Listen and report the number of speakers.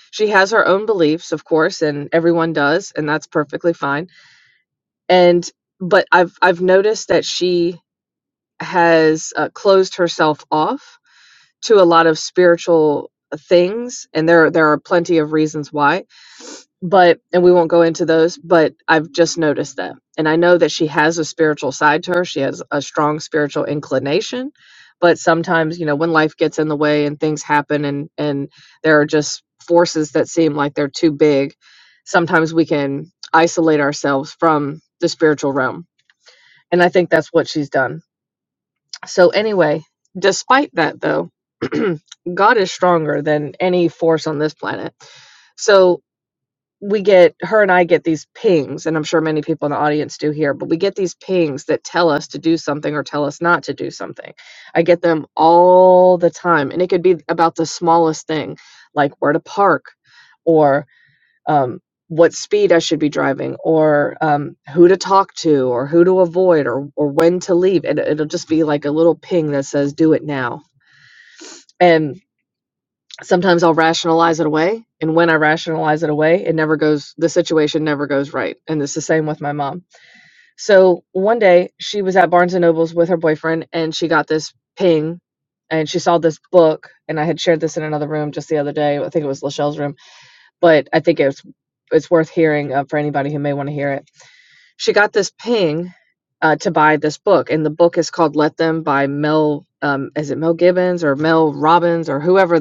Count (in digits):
1